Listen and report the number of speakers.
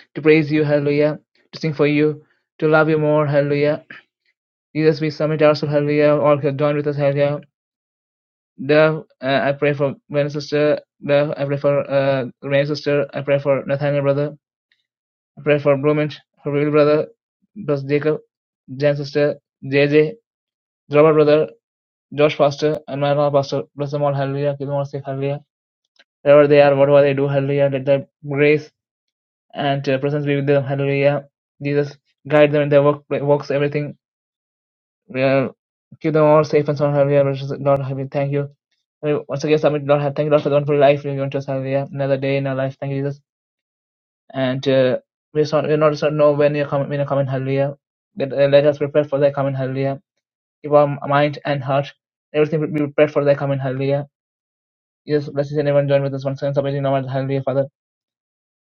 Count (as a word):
one